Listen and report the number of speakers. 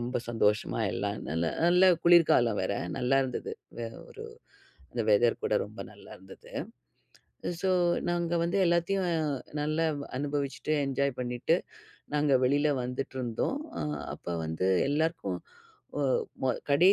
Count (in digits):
1